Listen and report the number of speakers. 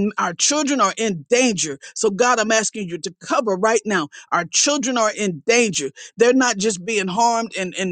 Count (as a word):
one